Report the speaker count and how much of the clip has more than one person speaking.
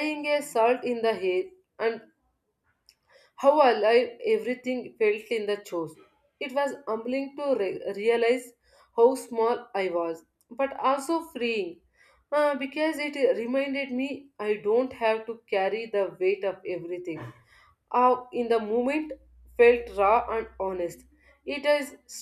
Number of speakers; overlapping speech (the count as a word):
one, no overlap